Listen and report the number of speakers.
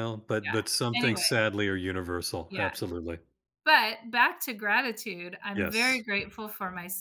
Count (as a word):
two